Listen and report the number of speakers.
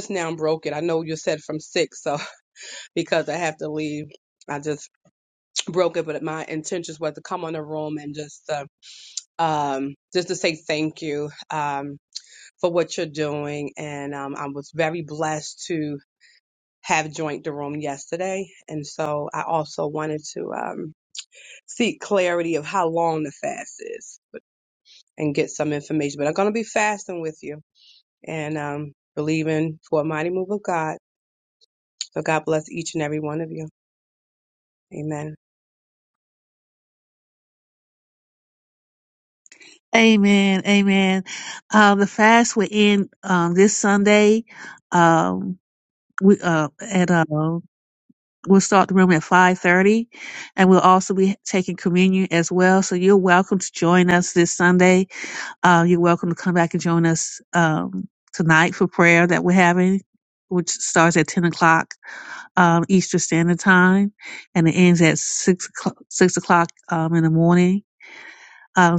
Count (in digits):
2